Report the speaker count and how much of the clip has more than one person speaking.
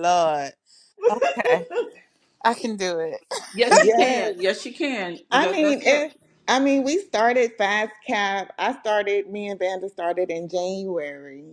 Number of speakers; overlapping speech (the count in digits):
3, about 11%